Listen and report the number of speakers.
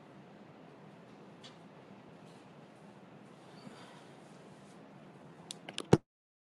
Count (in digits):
0